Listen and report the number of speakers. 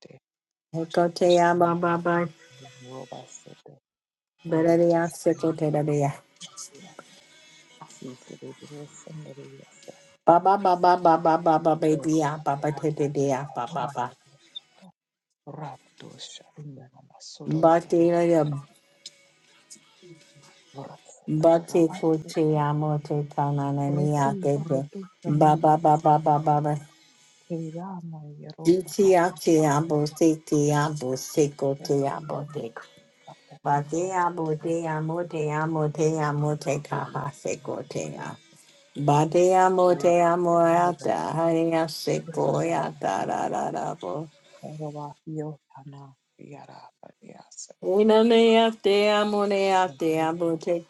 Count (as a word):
two